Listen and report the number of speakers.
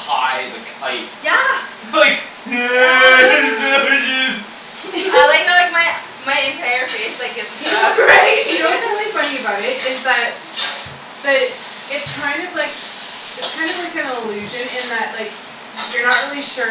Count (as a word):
three